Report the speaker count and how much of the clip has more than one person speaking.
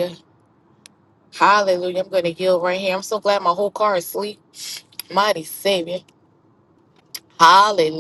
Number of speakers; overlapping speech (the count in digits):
1, no overlap